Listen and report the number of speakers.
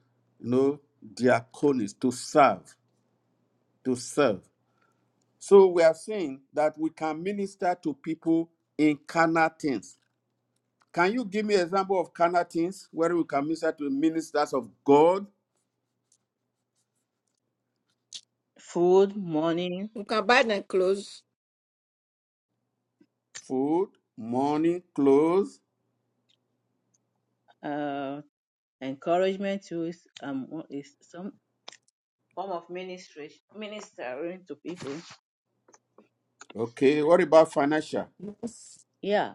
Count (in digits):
3